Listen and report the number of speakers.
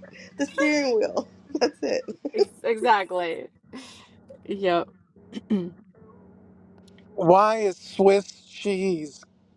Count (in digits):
3